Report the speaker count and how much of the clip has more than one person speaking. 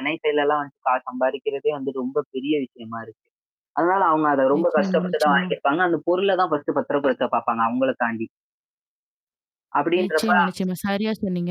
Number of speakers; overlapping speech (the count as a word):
two, about 13%